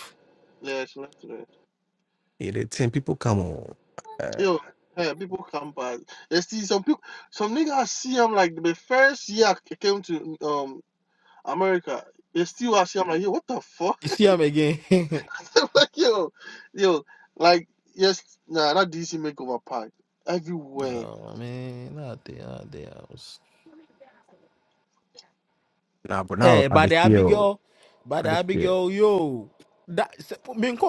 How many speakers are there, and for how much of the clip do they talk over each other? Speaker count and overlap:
3, about 6%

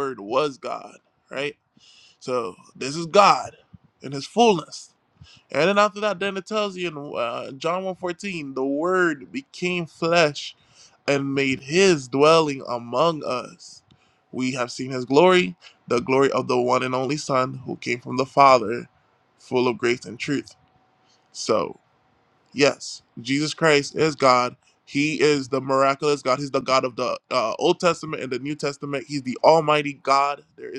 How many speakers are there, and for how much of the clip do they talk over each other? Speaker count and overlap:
1, no overlap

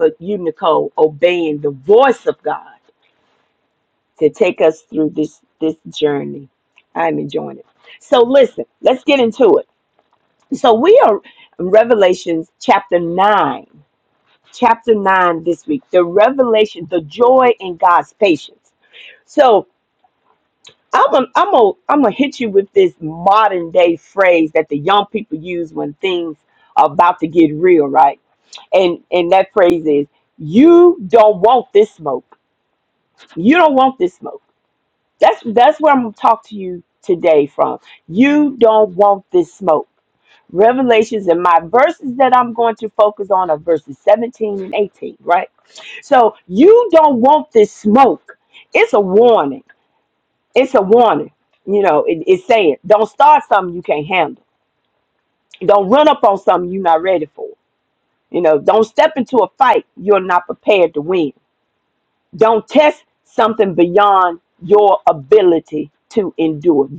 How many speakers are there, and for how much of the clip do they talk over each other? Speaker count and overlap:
1, no overlap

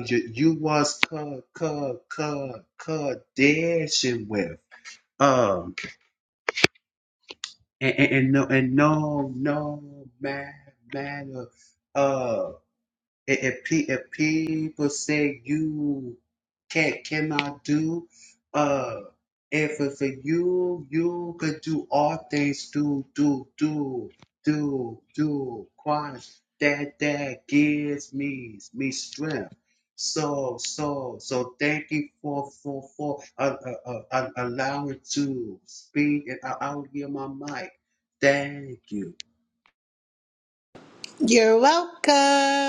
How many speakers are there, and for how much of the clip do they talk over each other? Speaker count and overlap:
2, no overlap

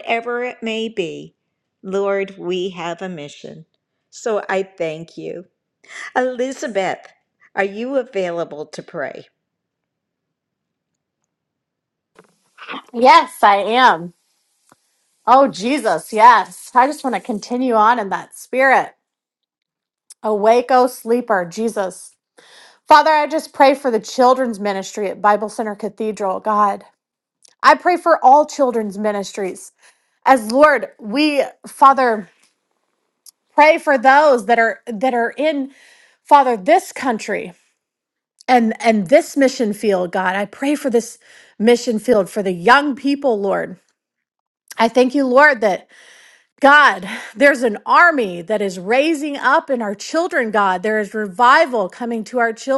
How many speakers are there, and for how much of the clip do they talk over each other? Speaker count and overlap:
2, no overlap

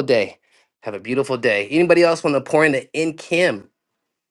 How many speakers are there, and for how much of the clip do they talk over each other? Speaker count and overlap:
1, no overlap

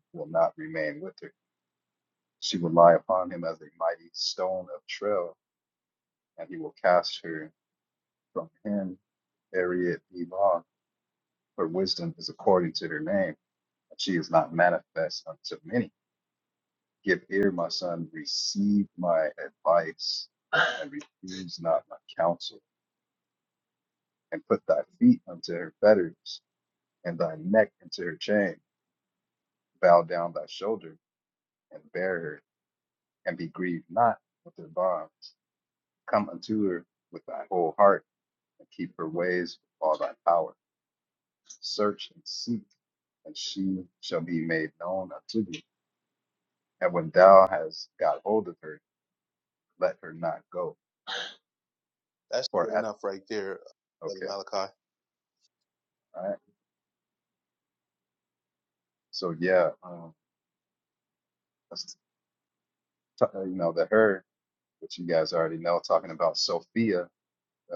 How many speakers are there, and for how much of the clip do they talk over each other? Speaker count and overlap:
2, about 1%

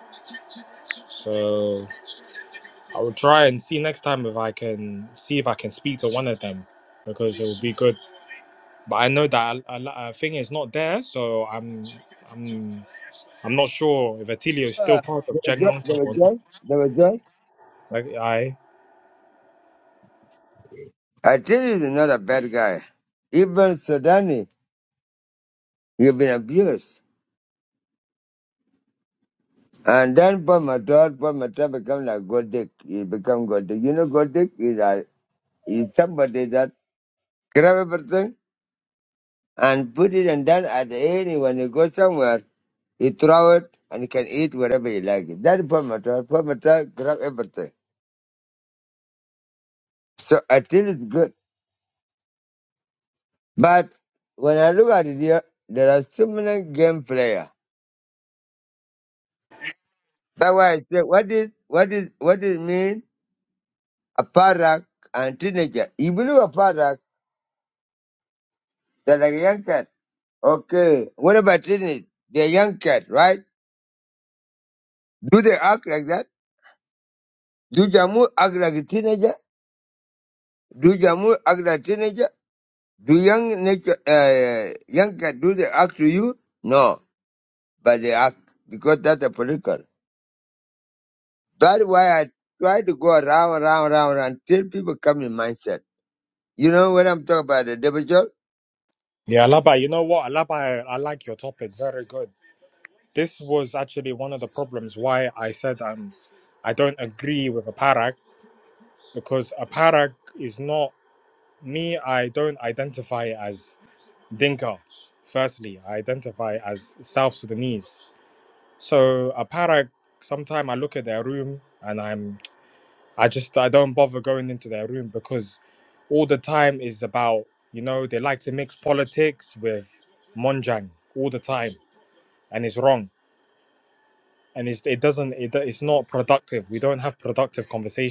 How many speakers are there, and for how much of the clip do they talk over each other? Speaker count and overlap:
2, about 1%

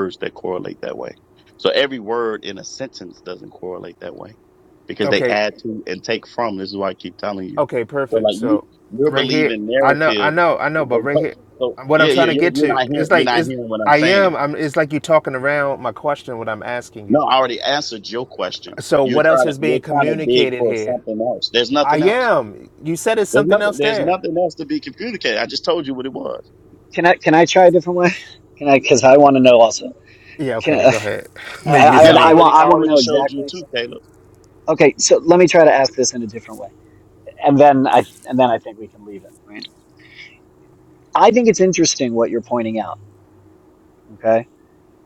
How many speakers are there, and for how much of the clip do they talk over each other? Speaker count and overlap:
3, about 24%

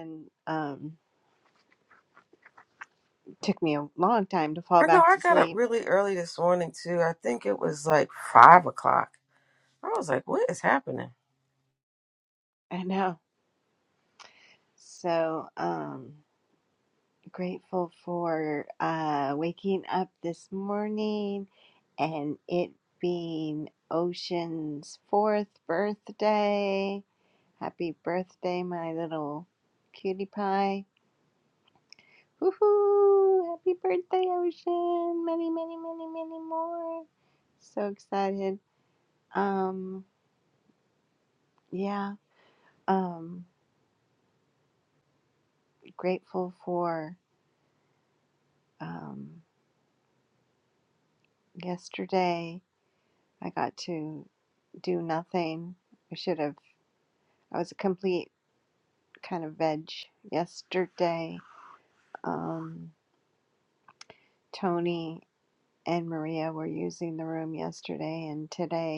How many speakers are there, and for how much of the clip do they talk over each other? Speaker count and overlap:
2, about 1%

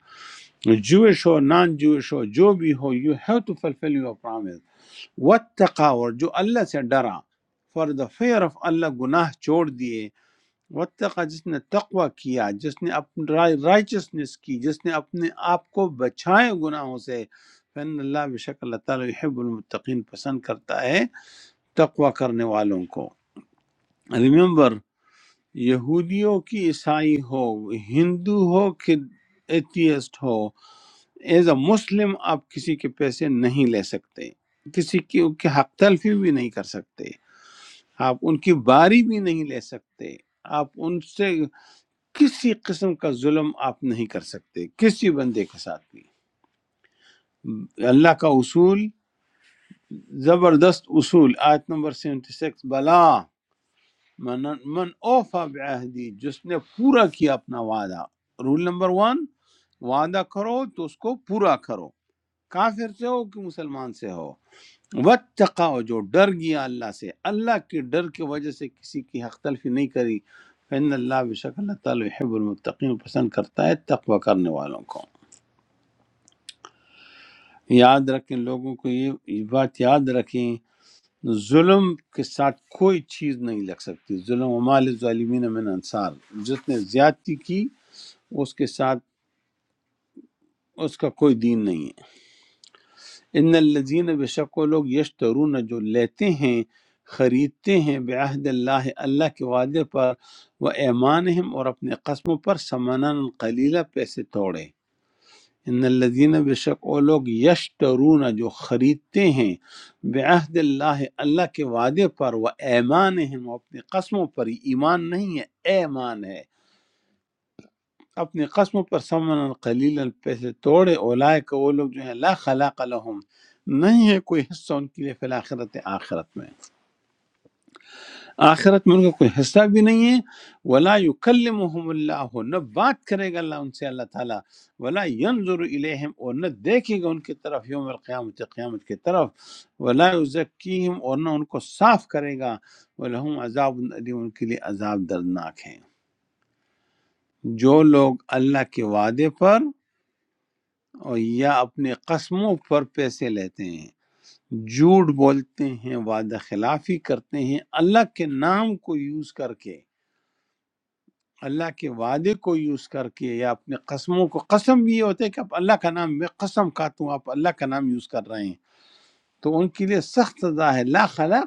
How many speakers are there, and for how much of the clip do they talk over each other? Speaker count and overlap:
1, no overlap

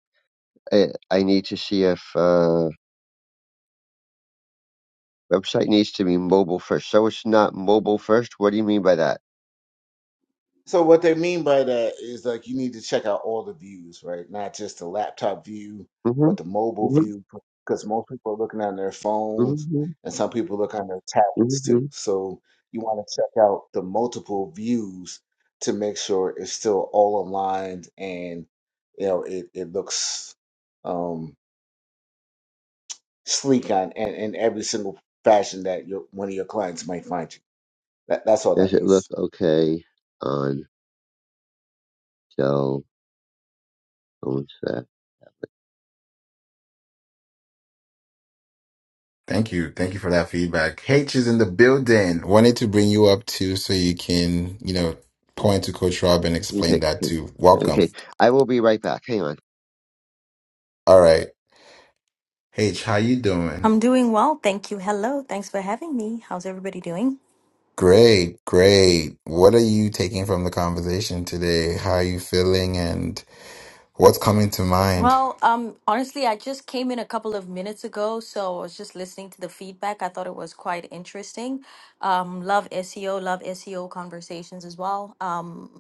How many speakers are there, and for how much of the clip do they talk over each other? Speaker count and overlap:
4, about 3%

